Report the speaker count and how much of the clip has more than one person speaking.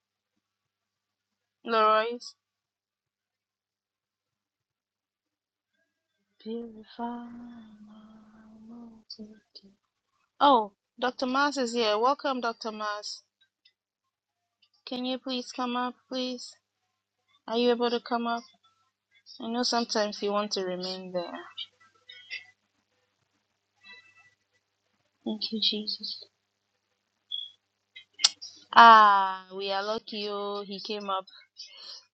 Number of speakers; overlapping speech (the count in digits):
1, no overlap